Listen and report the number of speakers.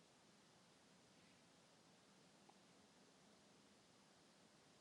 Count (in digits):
0